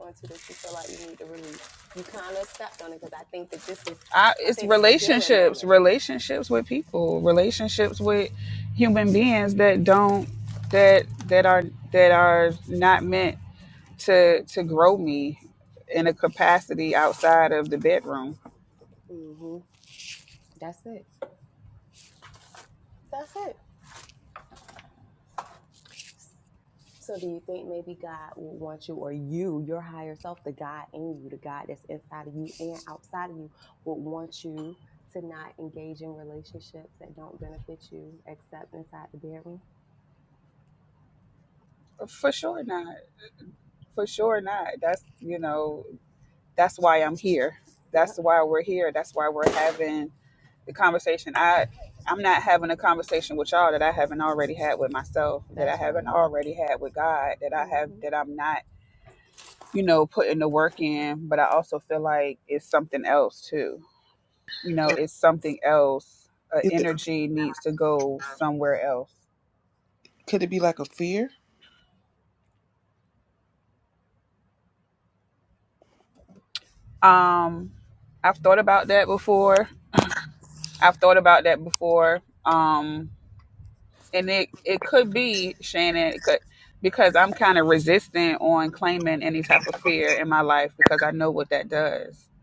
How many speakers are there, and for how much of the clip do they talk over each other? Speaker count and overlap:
three, about 3%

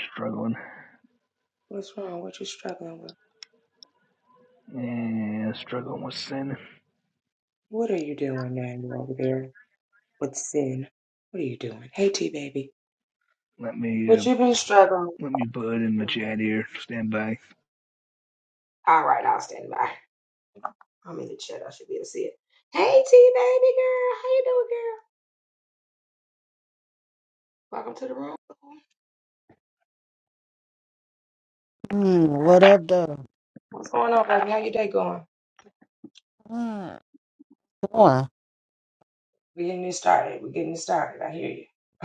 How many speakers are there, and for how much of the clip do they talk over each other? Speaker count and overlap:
three, about 1%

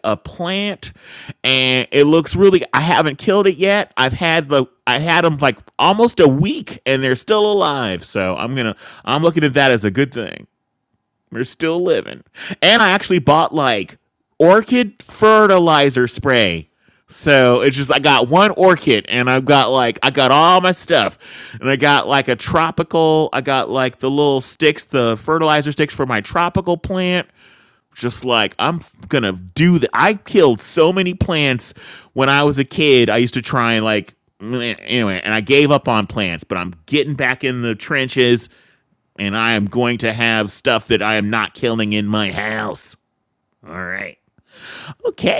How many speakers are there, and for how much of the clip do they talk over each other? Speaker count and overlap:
one, no overlap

